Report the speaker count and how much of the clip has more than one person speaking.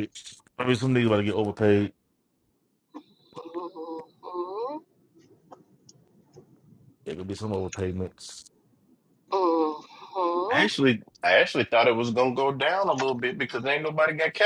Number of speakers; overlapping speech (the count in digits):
3, no overlap